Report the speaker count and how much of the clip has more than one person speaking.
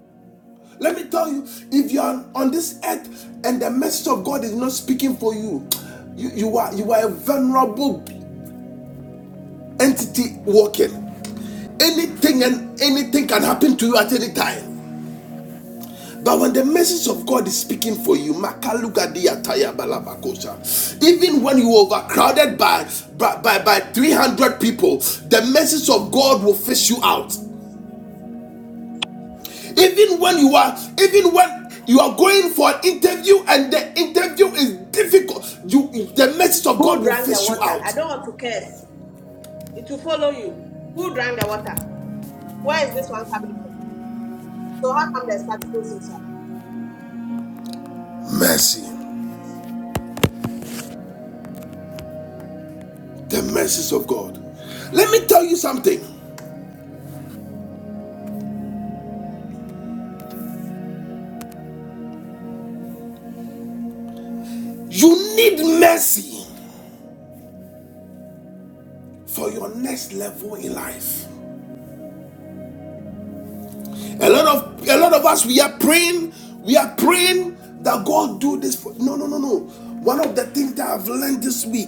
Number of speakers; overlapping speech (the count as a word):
two, about 1%